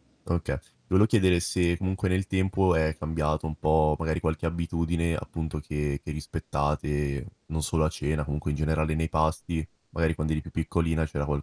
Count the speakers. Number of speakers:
1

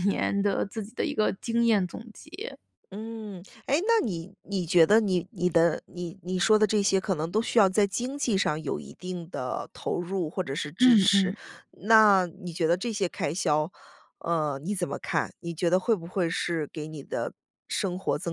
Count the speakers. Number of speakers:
2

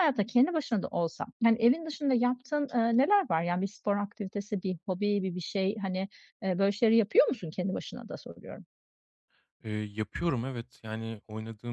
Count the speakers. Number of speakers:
2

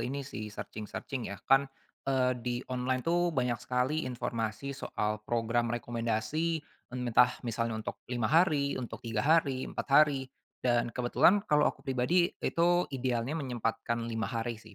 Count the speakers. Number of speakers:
1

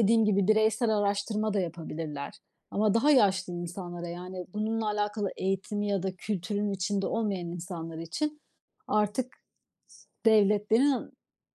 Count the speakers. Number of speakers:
1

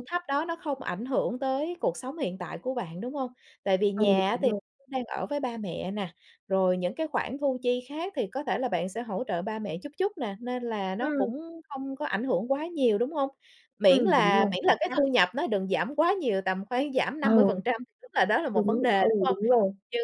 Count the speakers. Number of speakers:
2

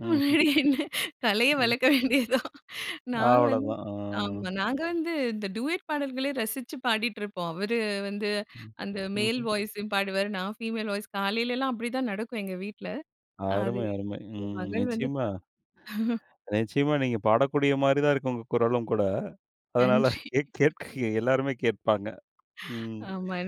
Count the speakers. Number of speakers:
2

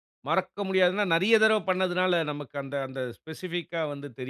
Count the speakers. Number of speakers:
1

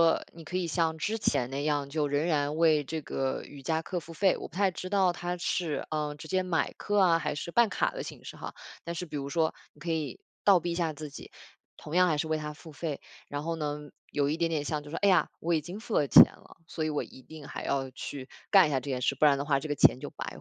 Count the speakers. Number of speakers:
1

